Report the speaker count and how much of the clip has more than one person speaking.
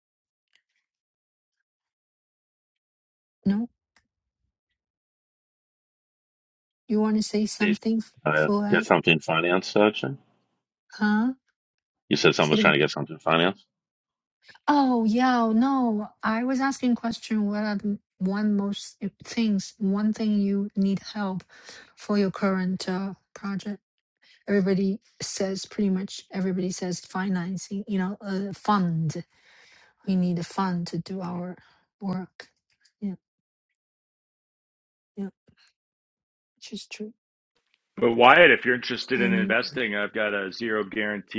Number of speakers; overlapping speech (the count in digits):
3, about 4%